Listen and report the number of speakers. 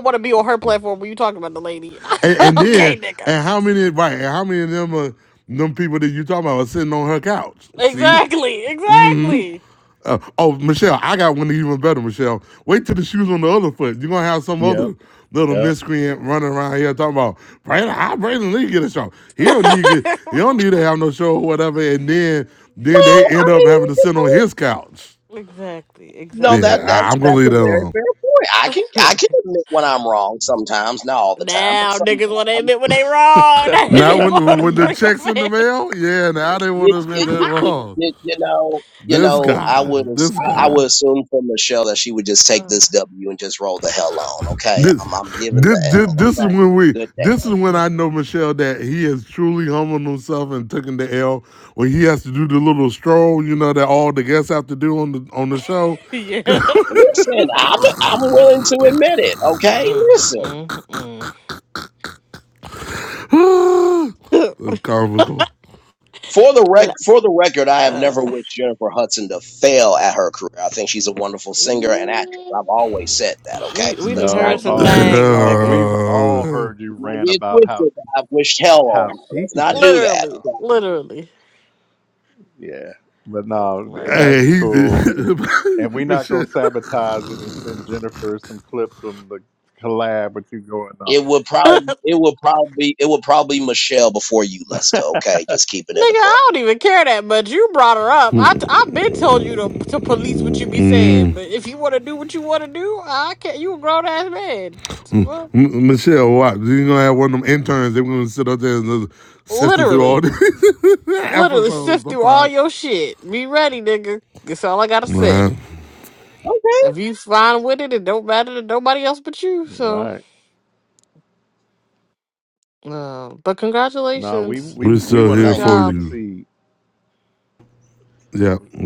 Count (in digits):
4